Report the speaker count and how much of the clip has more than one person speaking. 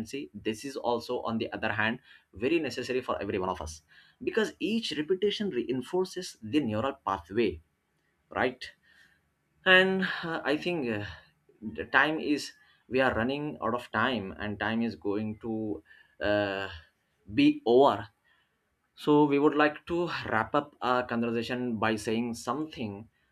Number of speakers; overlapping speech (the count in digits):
1, no overlap